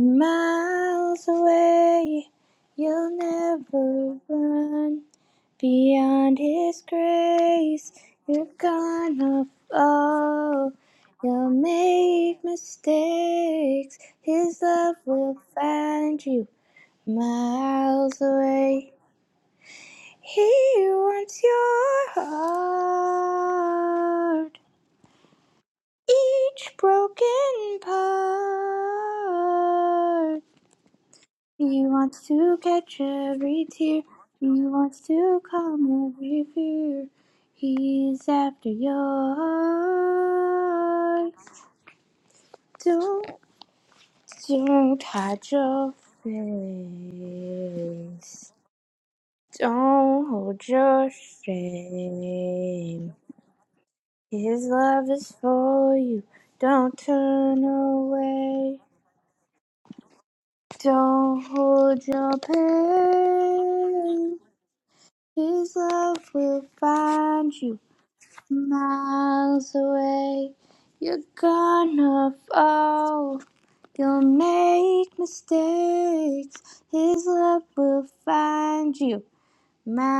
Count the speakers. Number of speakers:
one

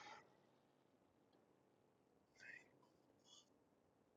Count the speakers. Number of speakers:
zero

